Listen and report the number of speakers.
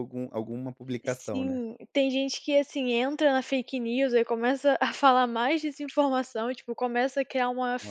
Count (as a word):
two